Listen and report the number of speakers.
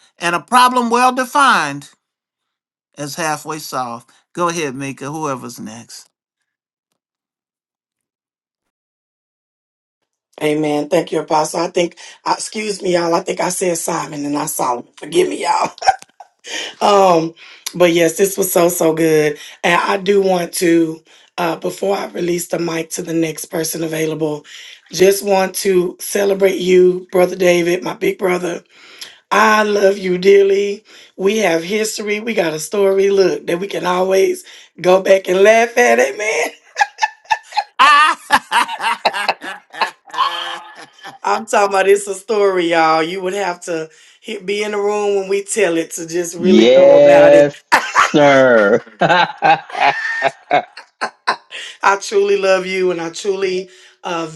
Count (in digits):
3